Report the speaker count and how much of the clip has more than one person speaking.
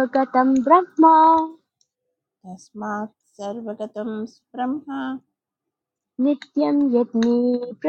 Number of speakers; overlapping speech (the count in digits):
2, no overlap